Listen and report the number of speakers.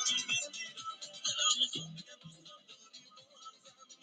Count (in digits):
0